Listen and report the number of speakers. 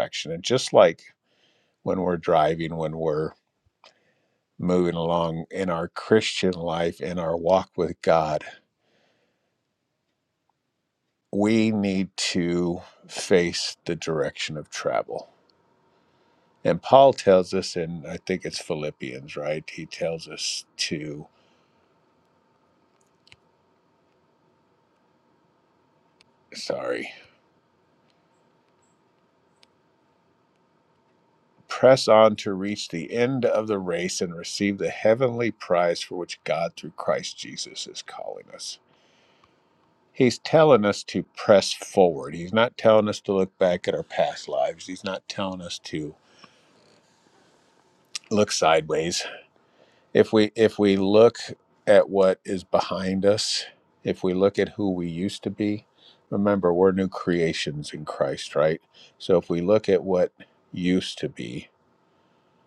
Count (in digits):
1